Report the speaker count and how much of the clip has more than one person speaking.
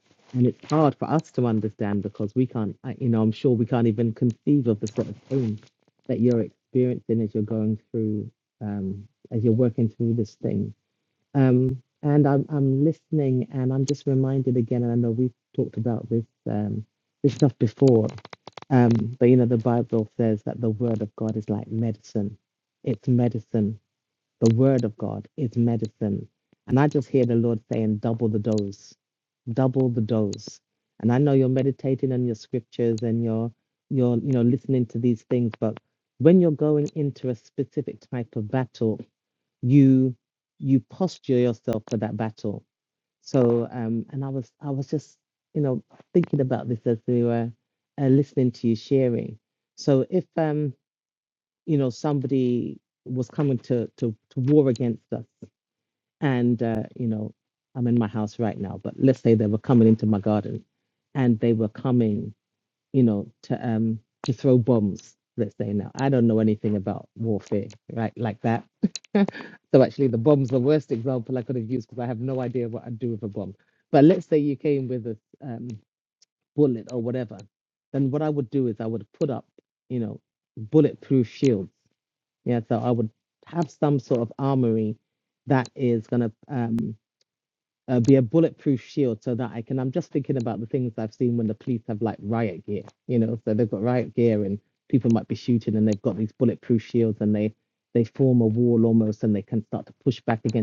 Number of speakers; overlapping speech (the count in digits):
1, no overlap